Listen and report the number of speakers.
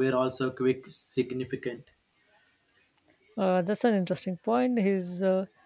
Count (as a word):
two